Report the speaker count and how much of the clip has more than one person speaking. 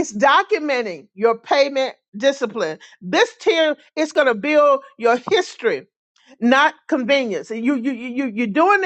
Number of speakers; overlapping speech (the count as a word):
one, no overlap